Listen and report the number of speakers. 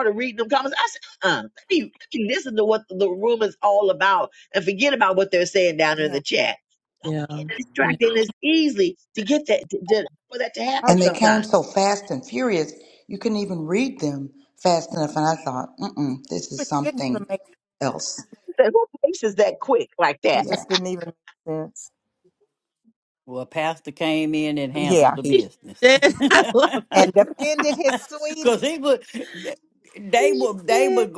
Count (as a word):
five